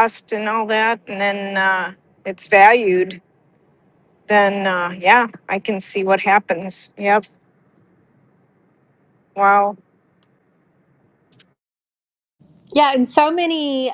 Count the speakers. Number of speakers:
two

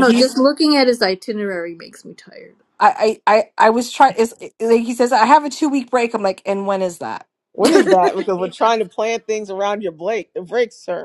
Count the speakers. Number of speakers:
three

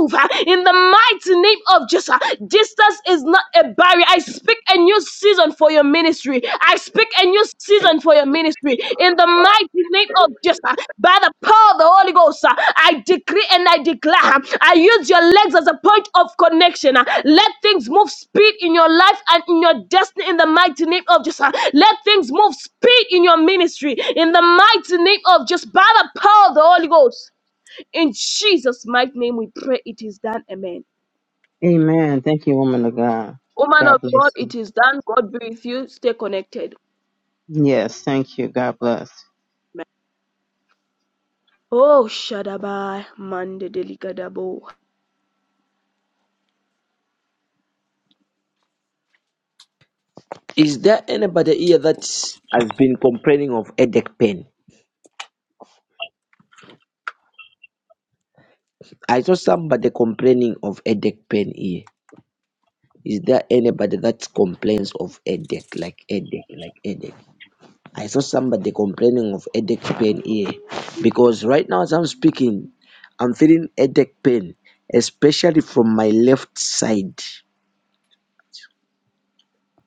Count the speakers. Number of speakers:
three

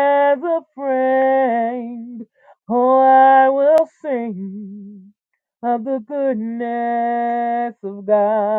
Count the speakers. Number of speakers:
one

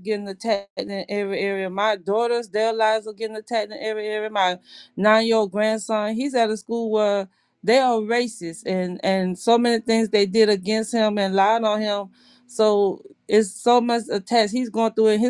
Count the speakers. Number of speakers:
one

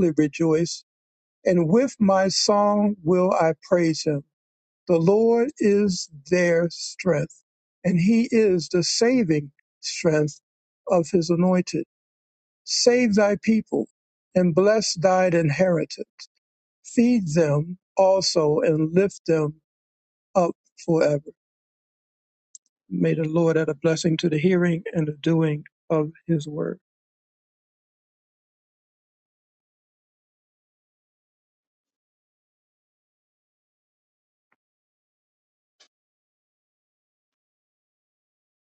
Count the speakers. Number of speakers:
one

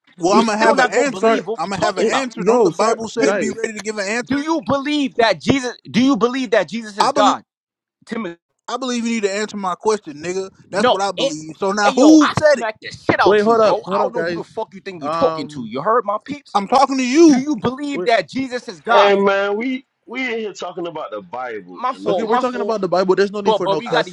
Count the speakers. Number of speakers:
four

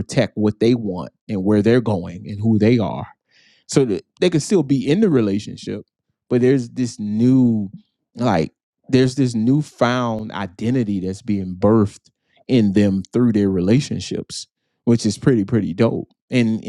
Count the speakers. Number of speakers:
one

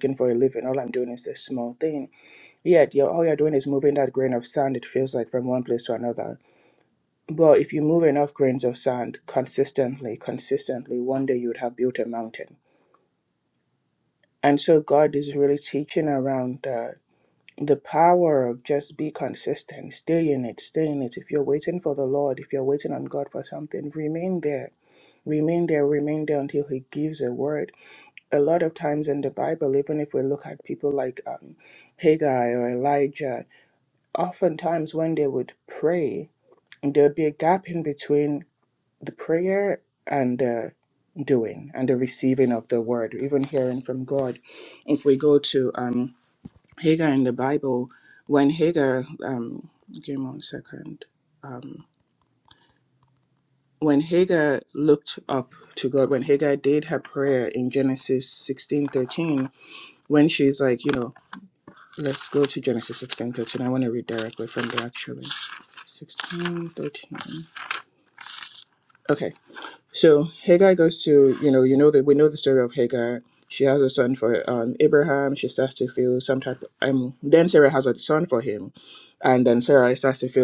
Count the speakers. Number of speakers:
one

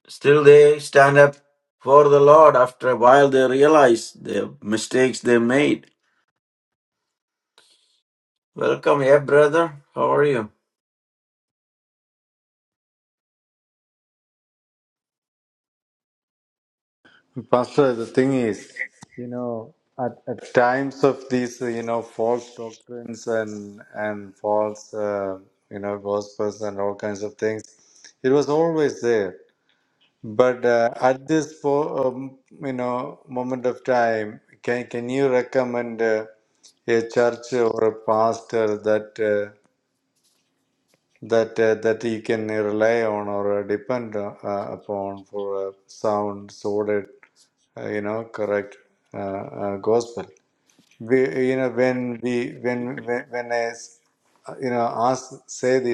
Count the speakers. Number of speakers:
two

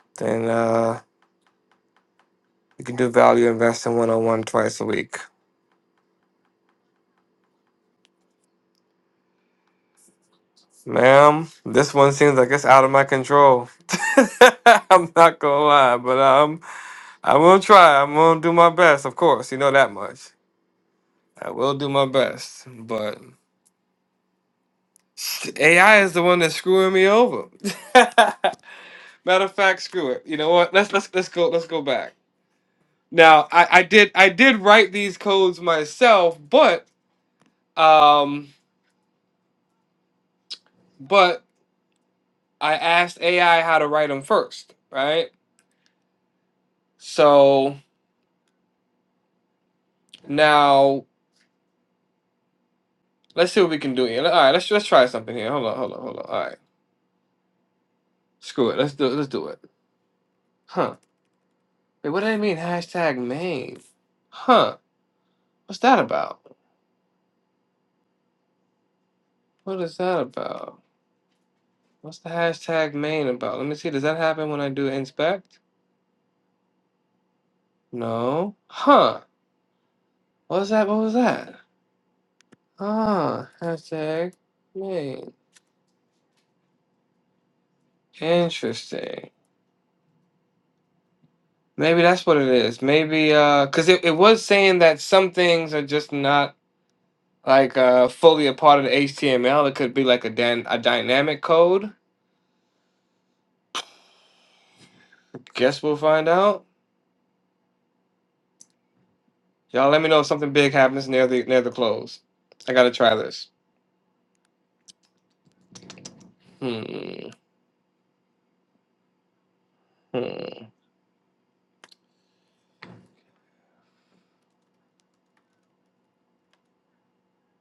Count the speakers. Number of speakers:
one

